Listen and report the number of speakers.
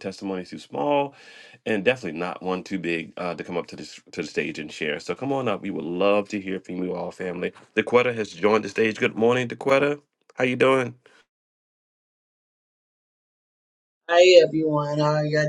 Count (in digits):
2